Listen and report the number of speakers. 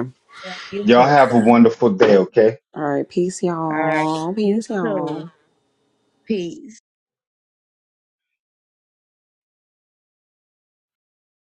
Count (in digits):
3